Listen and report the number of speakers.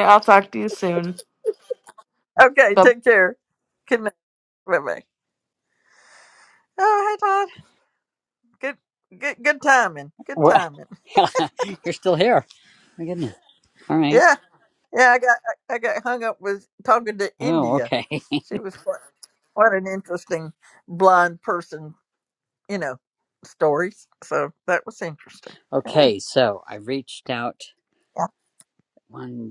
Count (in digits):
3